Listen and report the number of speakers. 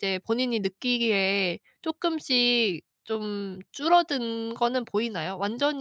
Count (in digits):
1